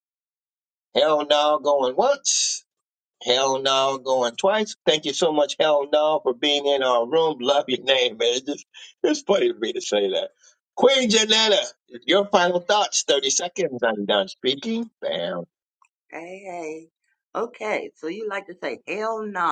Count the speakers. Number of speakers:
two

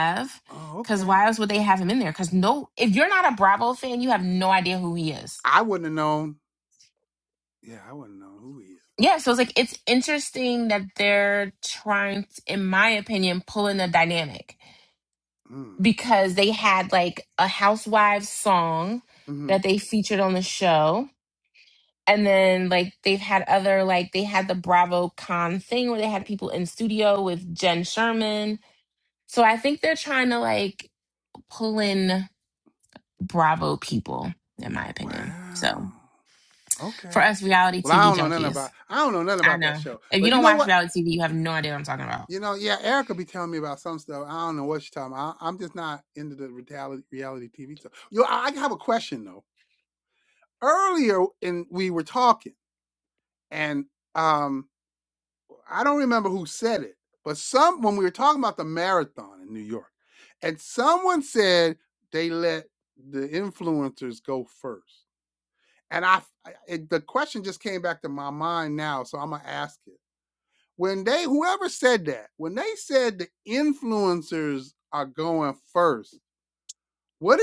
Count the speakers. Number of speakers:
two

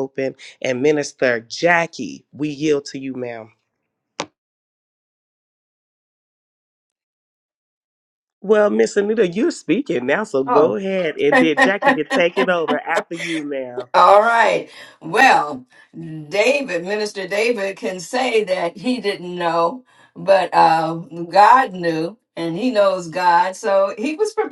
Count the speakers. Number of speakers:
two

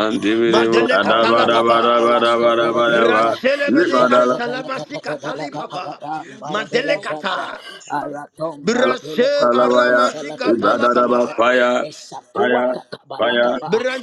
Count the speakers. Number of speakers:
three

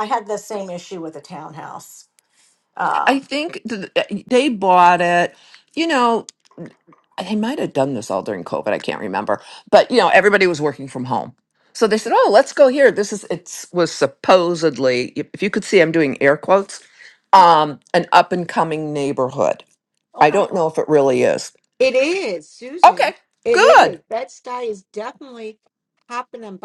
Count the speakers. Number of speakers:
three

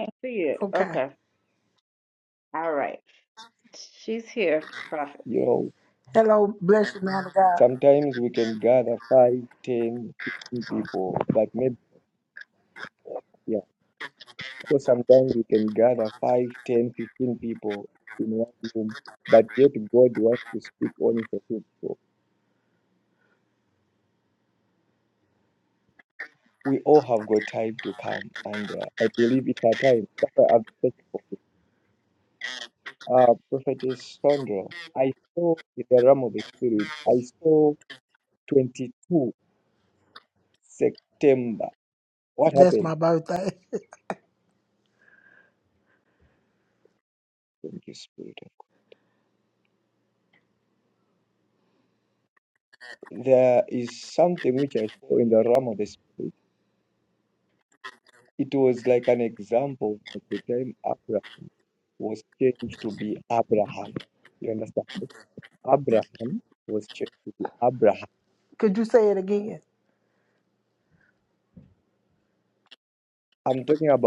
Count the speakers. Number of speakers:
three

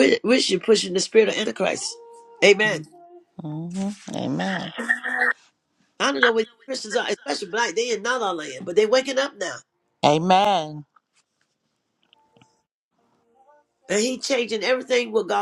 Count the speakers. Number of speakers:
two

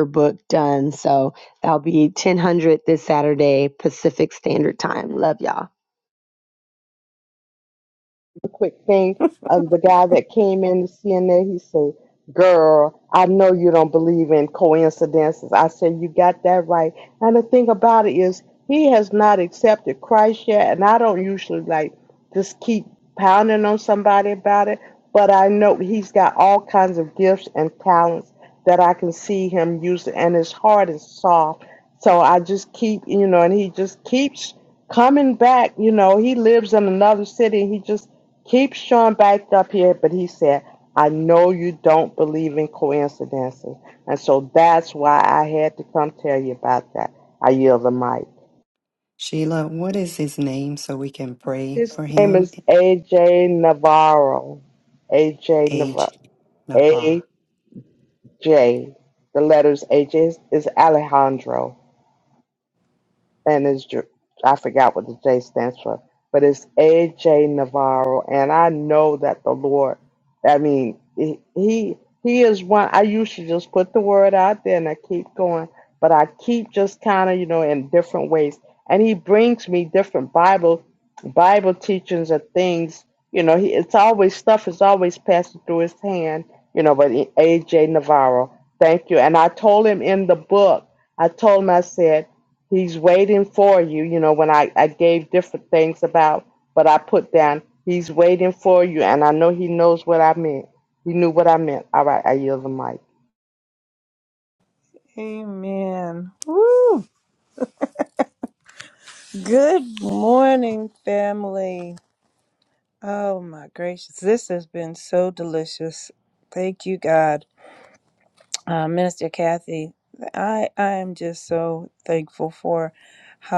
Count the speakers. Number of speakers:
four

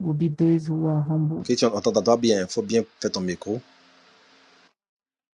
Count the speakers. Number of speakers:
two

